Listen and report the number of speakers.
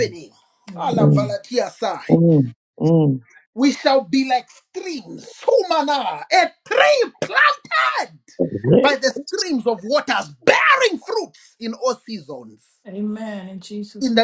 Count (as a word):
three